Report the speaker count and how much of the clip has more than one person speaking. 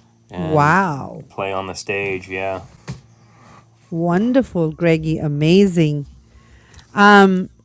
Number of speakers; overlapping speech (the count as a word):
two, about 5%